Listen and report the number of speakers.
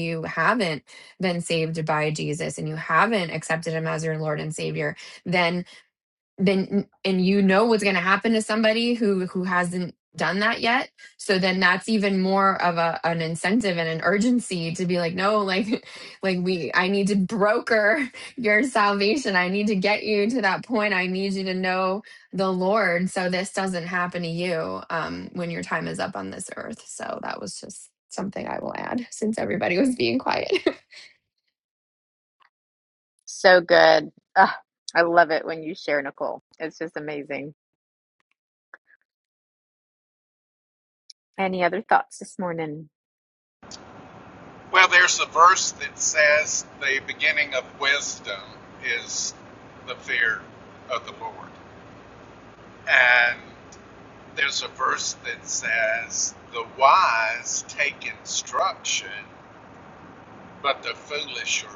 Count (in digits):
3